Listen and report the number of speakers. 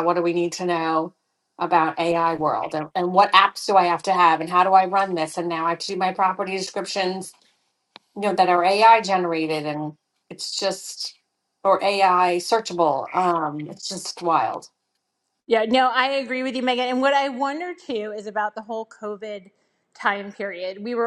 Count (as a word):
two